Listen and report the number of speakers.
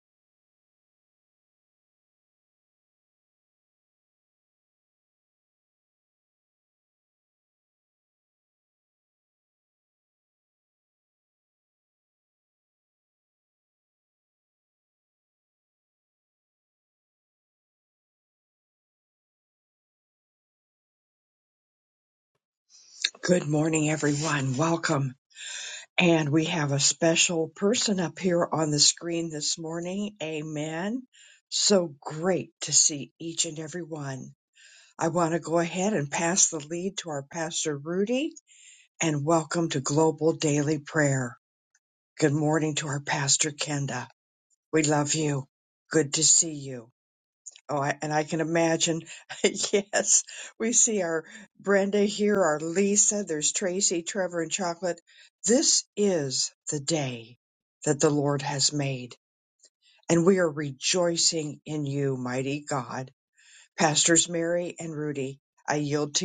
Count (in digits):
1